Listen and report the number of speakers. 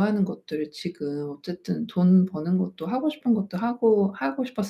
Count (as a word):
one